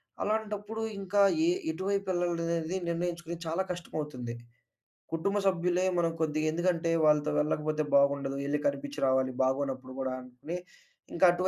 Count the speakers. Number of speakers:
1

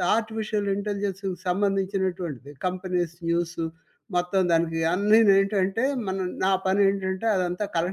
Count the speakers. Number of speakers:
1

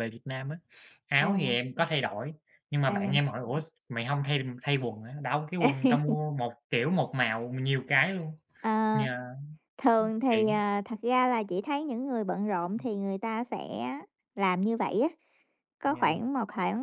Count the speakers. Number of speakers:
2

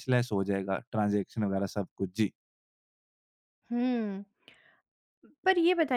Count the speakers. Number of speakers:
2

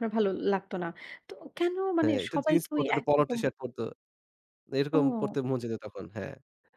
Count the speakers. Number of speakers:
2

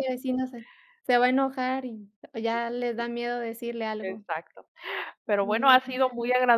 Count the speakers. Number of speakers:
2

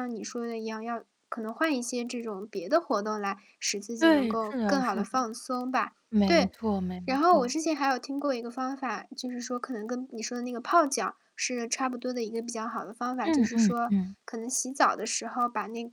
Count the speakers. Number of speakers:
2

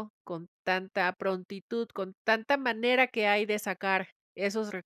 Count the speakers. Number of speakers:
1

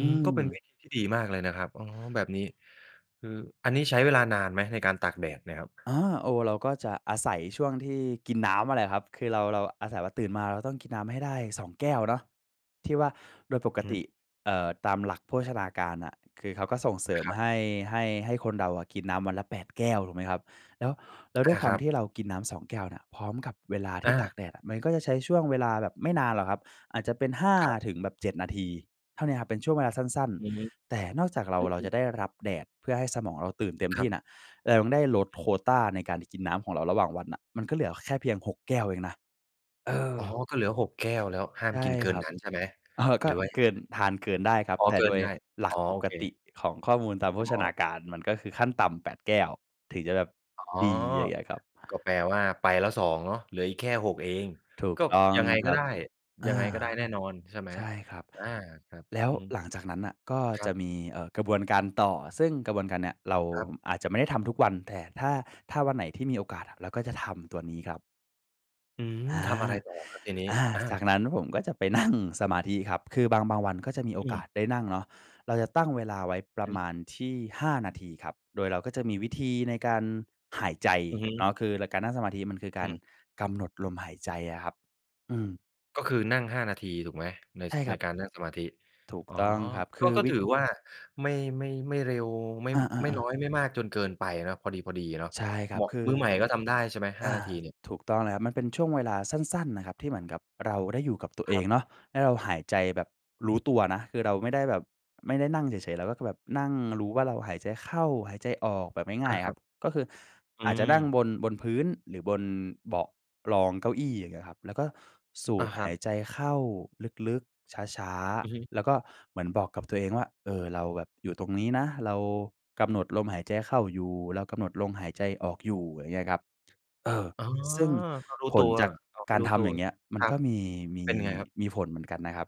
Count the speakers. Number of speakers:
2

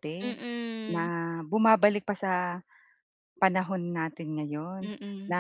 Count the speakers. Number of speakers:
2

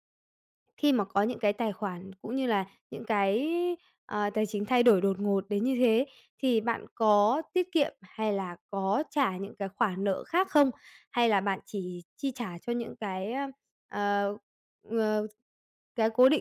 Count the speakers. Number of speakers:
1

